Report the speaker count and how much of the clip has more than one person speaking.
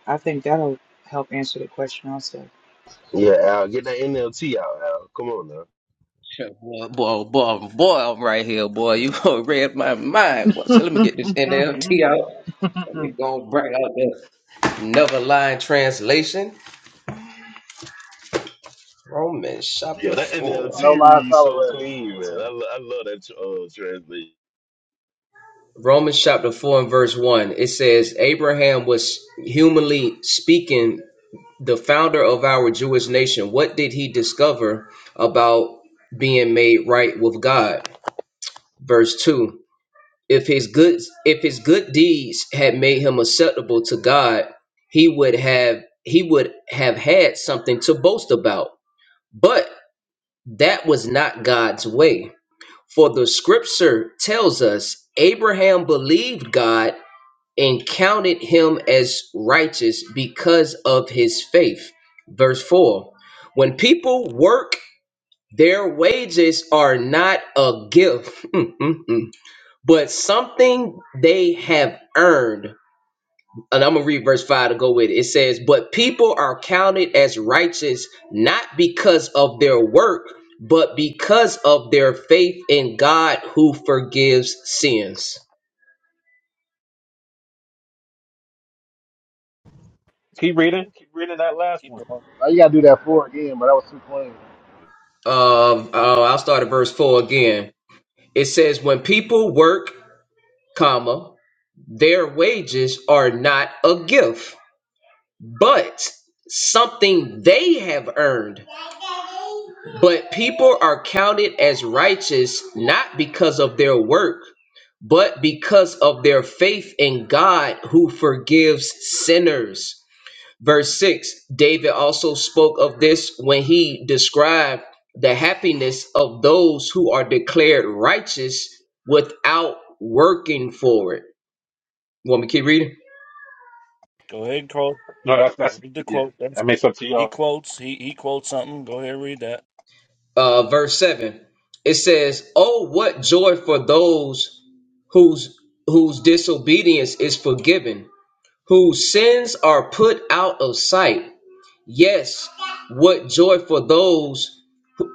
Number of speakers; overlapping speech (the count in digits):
6, about 2%